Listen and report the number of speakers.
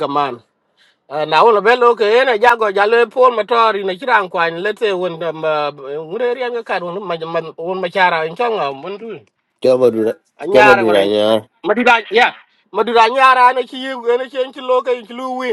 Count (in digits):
2